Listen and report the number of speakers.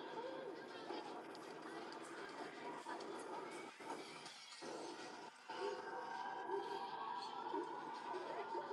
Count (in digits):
0